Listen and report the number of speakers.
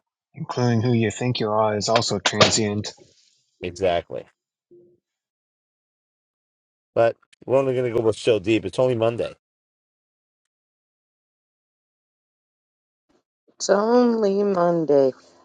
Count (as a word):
three